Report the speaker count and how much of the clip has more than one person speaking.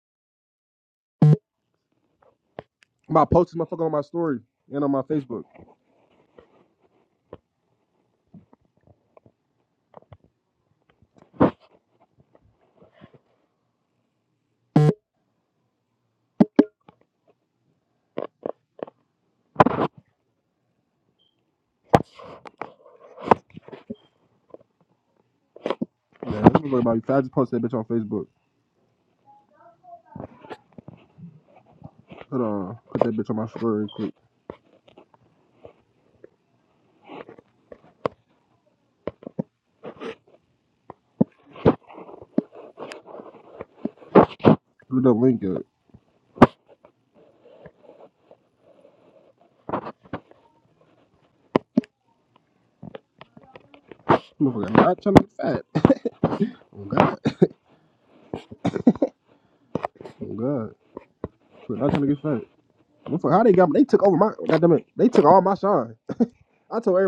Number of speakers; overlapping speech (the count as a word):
one, no overlap